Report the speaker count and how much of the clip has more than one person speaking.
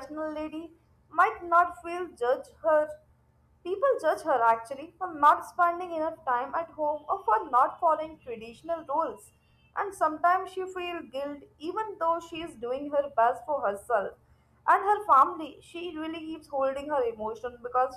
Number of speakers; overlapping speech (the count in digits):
1, no overlap